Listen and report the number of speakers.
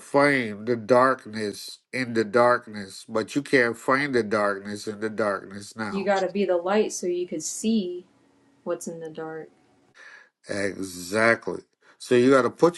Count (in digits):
2